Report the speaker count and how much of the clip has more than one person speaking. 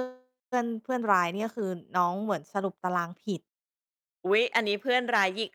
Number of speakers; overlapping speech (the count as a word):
two, no overlap